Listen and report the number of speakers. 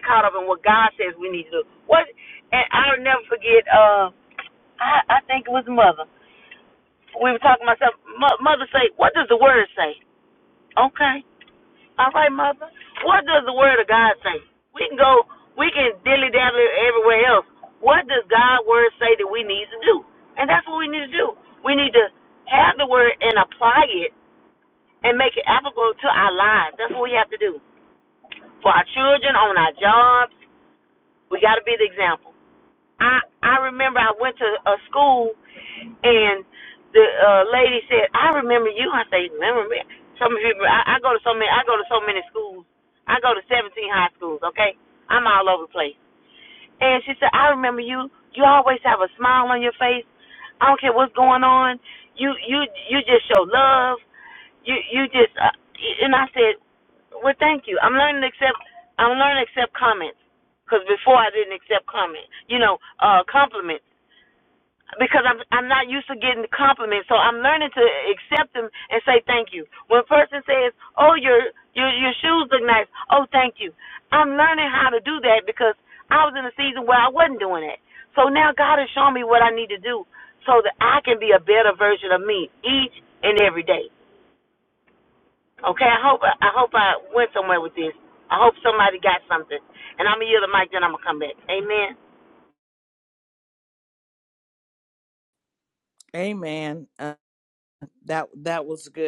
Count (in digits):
2